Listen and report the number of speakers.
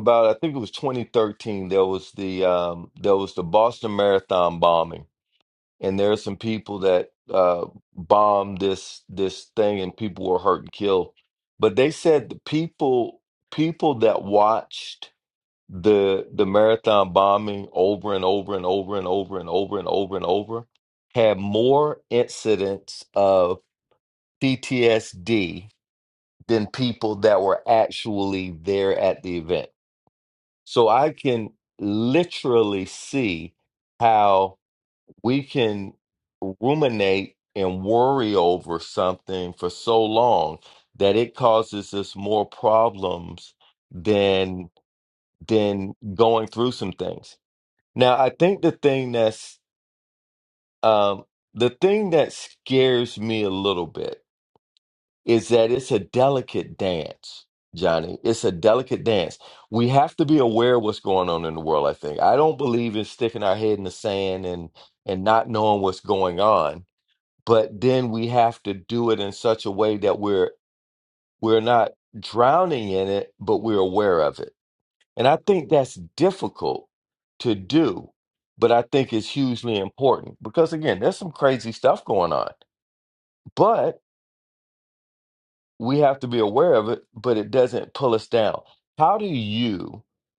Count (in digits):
1